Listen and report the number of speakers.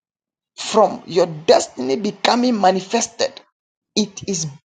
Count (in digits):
1